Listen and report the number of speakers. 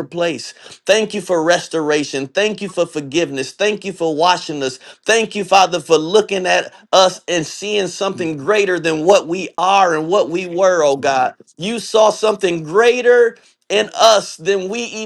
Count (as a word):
one